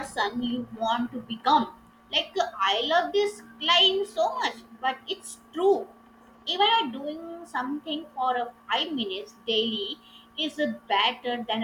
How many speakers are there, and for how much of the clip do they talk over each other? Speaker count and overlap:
1, no overlap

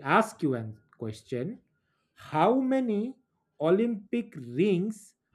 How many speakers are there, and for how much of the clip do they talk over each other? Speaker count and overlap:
1, no overlap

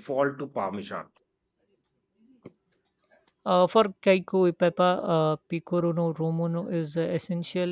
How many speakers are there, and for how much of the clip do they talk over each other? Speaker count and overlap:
2, no overlap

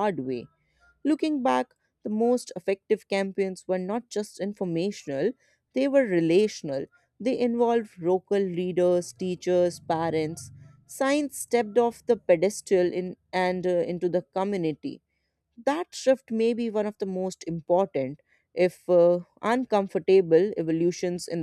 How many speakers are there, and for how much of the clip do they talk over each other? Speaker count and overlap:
1, no overlap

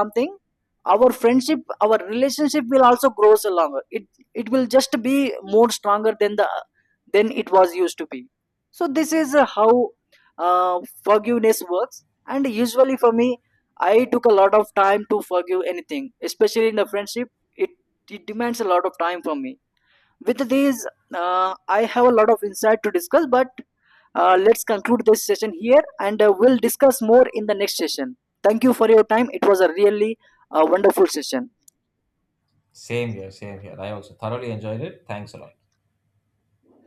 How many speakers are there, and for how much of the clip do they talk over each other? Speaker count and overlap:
2, no overlap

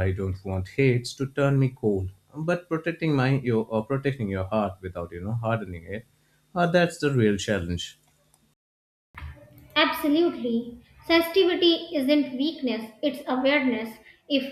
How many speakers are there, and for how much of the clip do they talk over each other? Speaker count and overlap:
2, no overlap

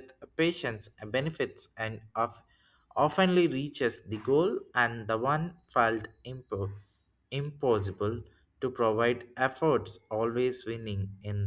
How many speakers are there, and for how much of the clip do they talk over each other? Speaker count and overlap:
1, no overlap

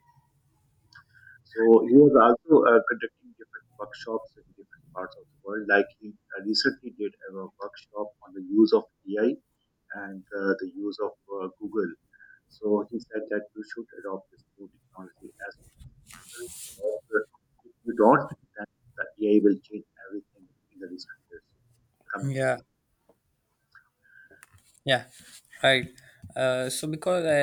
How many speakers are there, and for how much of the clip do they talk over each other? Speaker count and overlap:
2, under 1%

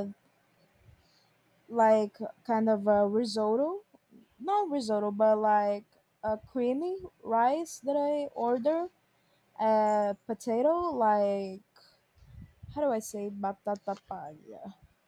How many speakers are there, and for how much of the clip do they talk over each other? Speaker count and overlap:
1, no overlap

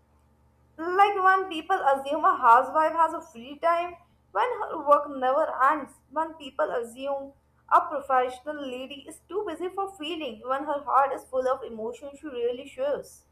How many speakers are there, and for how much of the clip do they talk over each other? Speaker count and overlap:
1, no overlap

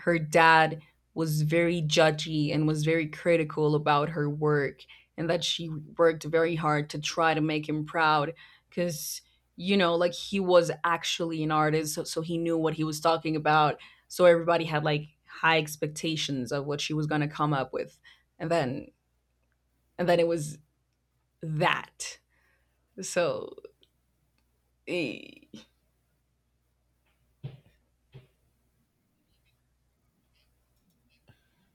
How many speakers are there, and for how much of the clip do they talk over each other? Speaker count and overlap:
1, no overlap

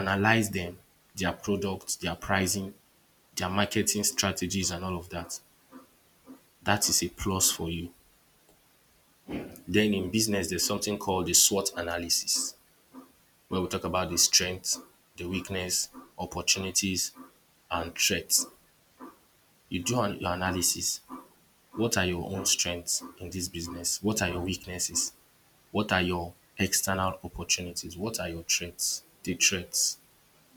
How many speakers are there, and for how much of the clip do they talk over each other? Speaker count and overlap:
1, no overlap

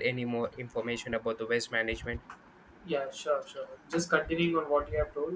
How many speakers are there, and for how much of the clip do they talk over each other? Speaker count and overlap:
2, no overlap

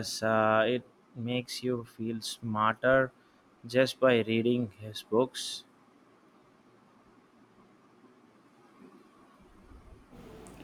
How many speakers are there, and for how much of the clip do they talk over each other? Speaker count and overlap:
1, no overlap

